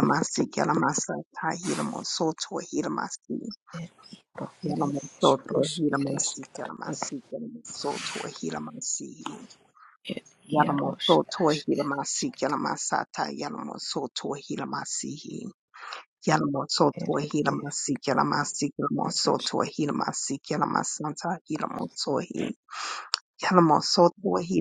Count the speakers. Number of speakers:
two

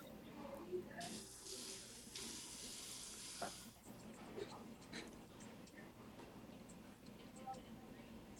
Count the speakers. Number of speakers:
zero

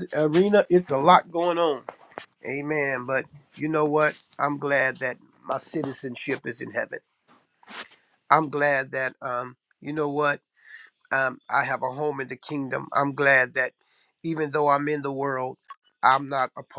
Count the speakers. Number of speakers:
one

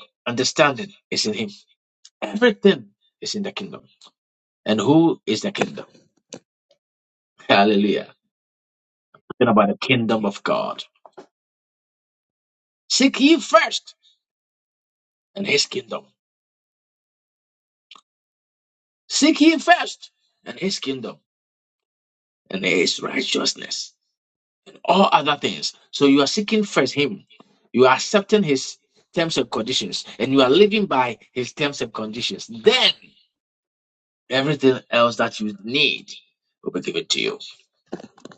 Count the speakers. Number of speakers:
one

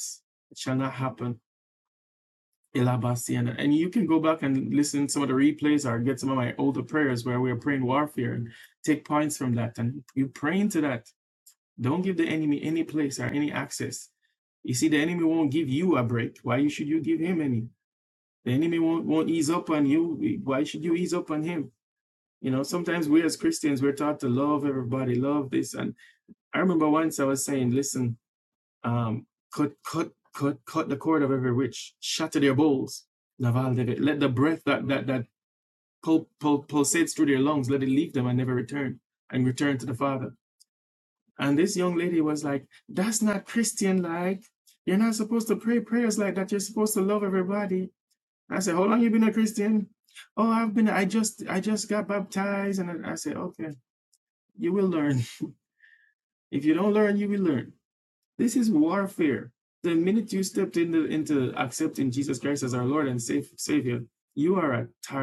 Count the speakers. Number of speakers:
one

